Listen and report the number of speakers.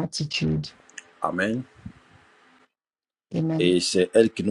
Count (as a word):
two